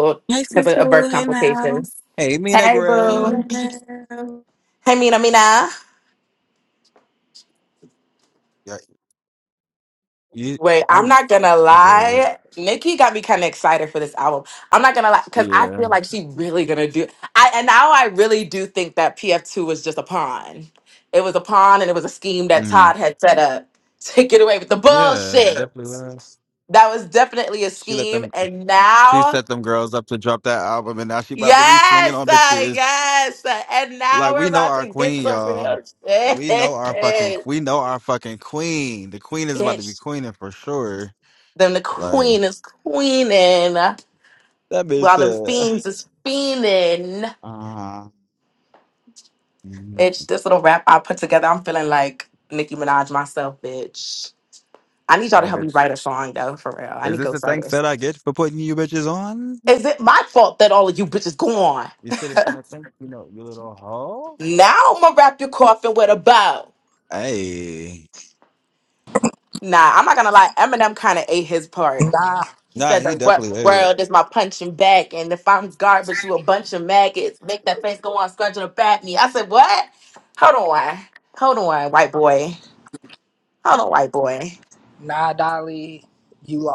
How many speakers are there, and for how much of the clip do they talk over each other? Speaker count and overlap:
4, about 15%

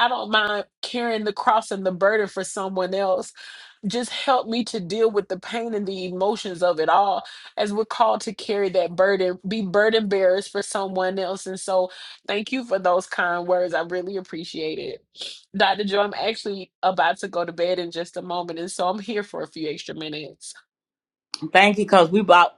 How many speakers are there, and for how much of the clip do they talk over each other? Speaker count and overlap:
2, no overlap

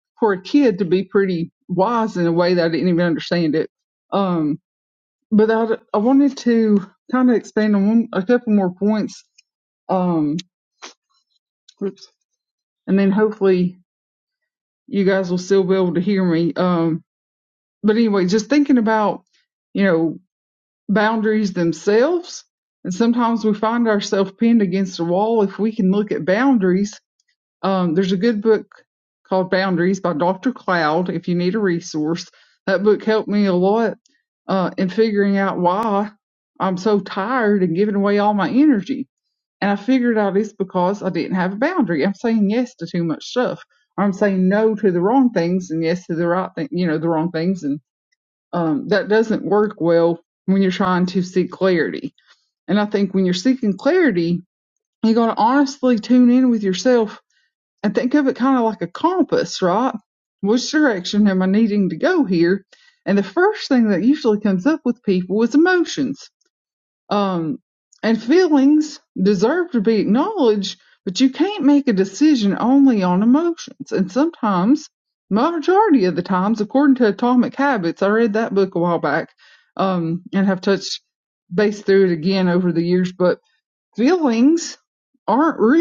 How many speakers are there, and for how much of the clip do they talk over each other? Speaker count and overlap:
1, no overlap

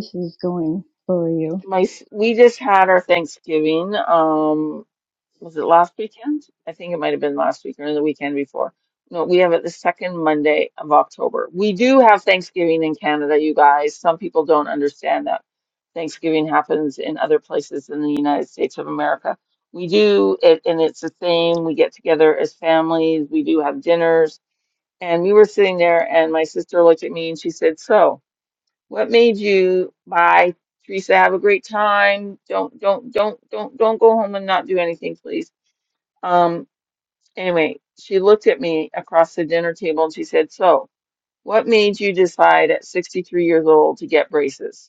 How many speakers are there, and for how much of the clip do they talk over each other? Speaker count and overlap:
2, no overlap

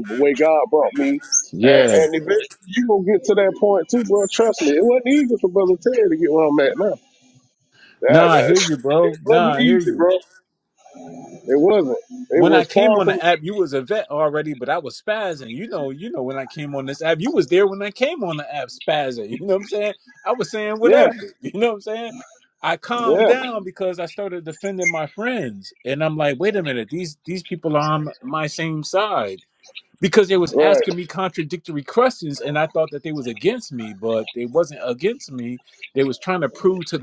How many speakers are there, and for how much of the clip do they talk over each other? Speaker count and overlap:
2, about 11%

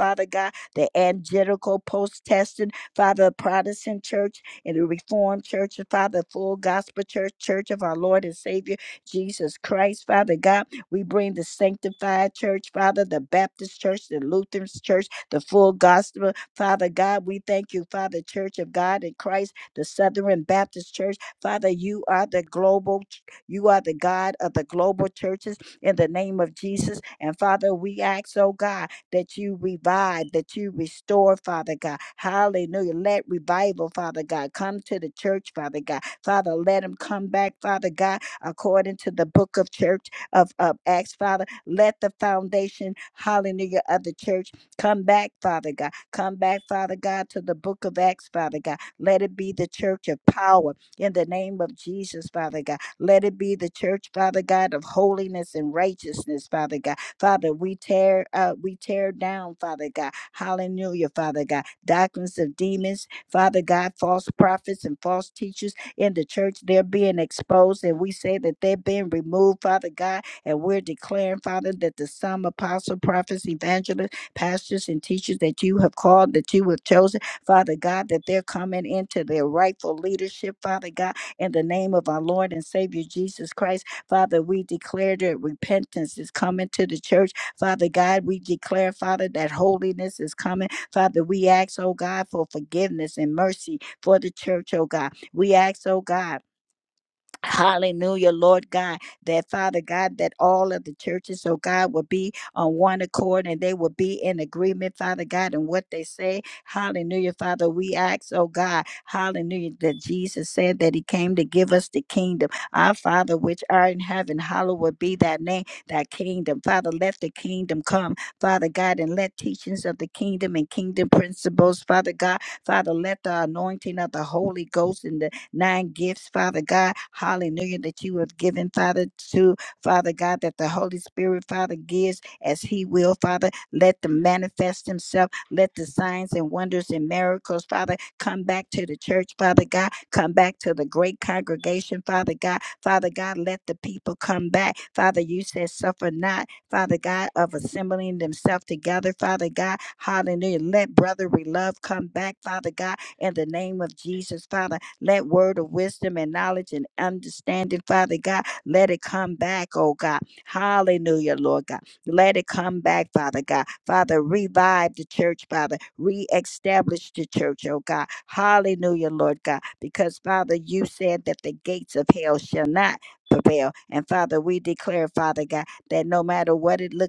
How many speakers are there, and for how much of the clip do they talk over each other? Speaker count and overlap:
1, no overlap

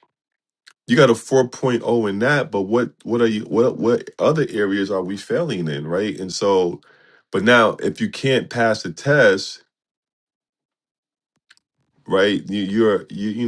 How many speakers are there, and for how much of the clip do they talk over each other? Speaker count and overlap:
1, no overlap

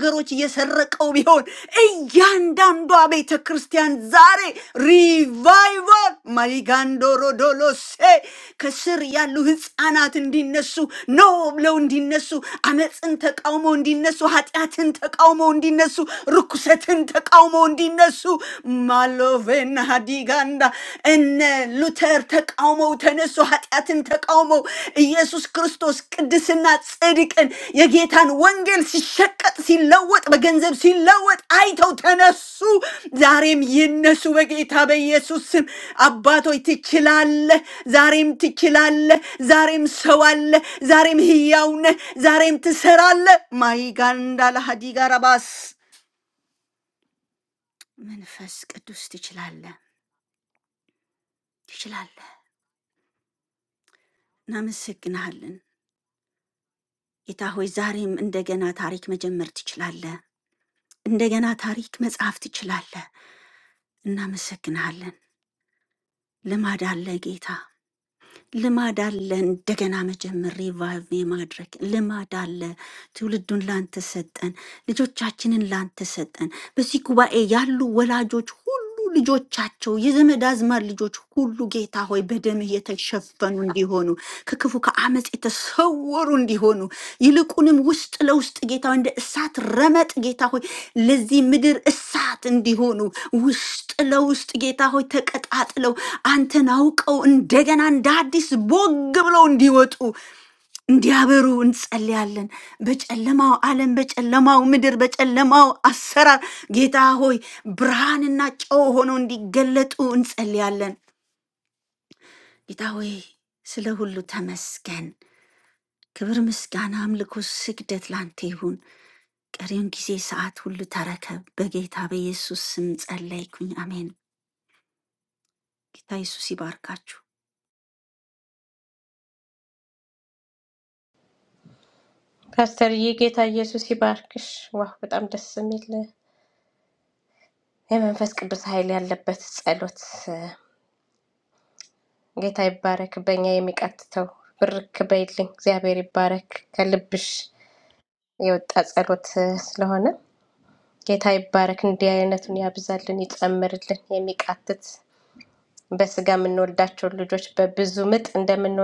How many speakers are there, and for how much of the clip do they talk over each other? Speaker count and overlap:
2, no overlap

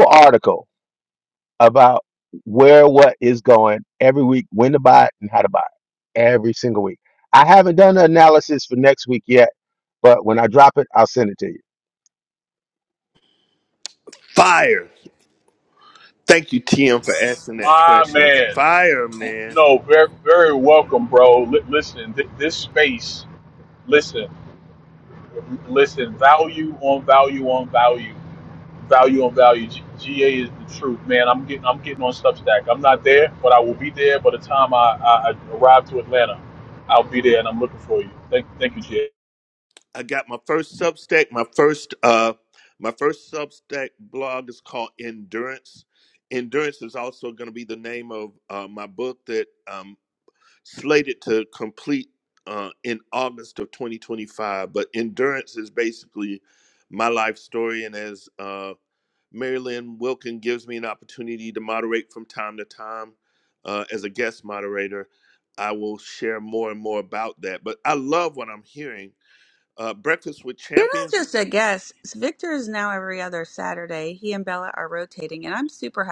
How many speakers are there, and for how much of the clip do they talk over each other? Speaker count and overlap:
4, about 2%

